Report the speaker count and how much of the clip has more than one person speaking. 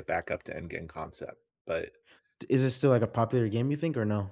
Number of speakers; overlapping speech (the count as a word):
two, no overlap